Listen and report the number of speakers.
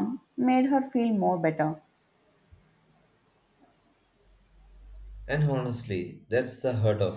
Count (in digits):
2